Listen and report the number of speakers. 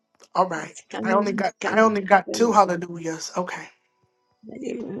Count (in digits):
2